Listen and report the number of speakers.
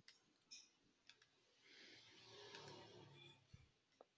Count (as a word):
zero